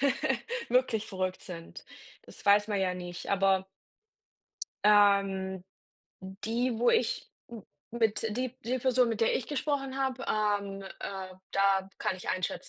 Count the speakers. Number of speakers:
one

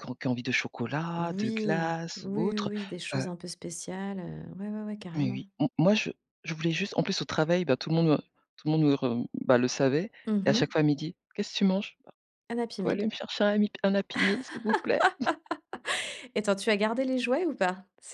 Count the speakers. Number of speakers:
two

